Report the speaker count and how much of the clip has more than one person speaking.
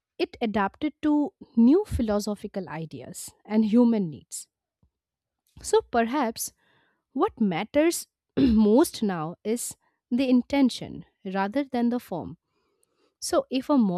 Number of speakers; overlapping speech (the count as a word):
one, no overlap